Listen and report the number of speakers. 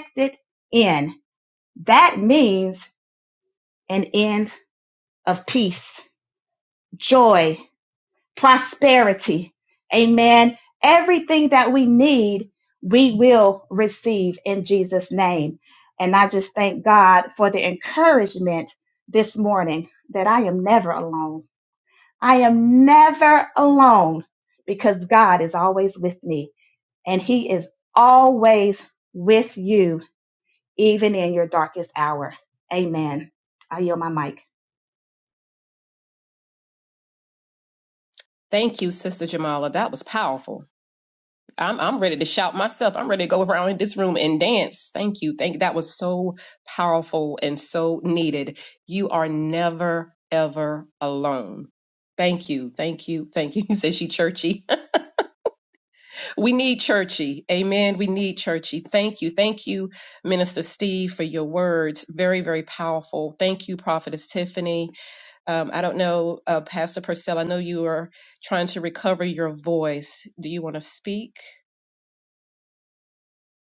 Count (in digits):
2